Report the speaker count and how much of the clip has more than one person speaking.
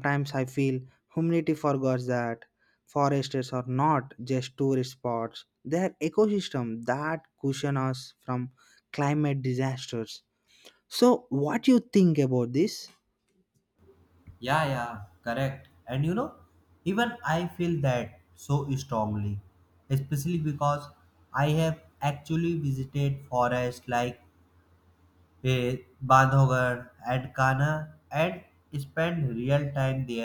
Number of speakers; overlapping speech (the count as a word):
two, no overlap